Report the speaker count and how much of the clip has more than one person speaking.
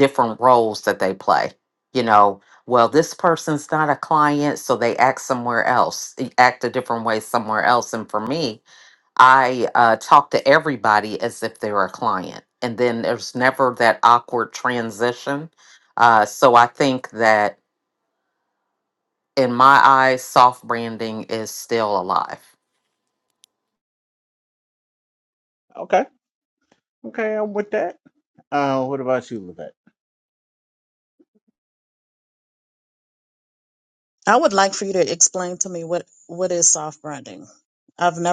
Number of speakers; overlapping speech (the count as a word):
three, no overlap